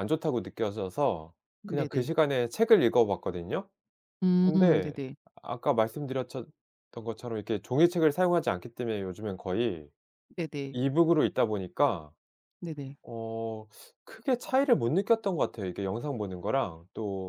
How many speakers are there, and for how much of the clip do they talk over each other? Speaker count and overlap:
2, about 5%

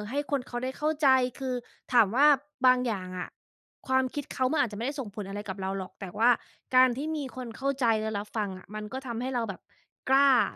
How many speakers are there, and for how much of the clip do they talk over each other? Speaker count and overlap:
1, no overlap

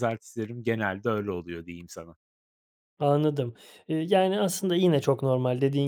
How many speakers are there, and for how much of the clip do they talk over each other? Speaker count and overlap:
2, no overlap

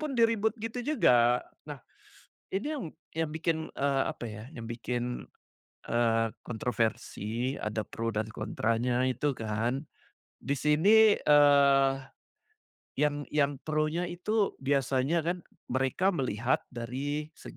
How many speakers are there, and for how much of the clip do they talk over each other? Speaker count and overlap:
1, no overlap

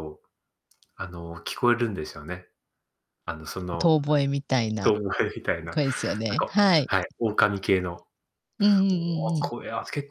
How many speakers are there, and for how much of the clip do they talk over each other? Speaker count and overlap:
2, about 19%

